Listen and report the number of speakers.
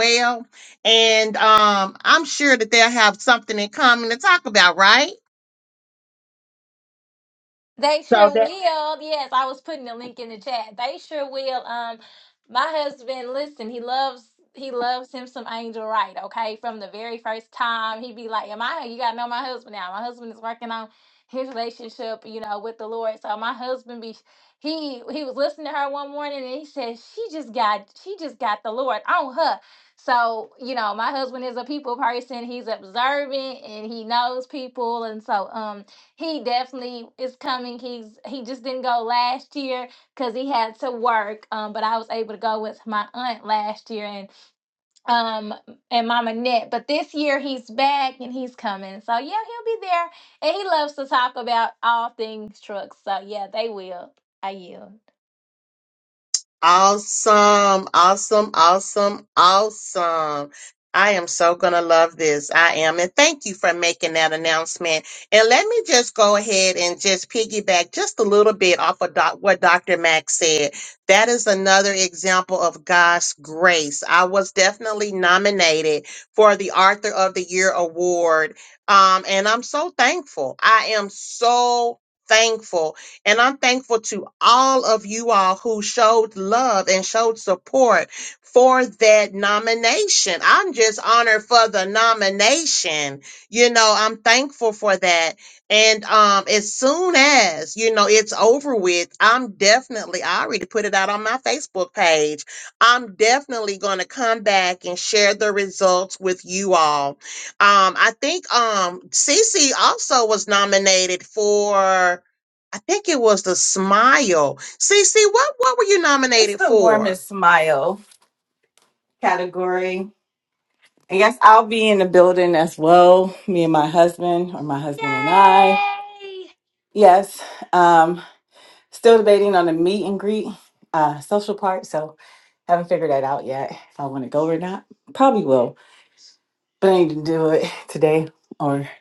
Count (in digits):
3